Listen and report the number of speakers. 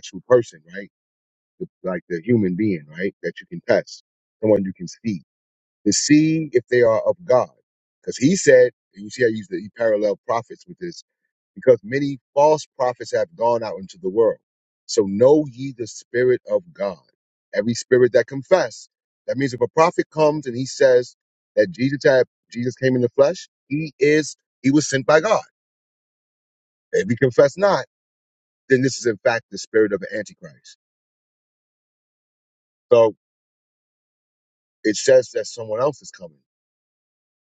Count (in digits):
1